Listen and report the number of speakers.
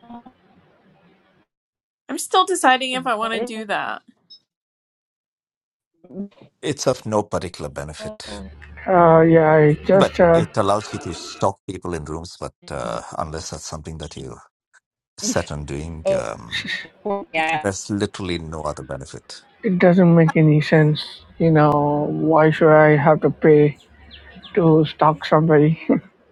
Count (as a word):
four